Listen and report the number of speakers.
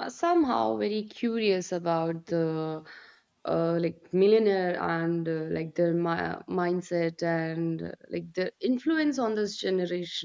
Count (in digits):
1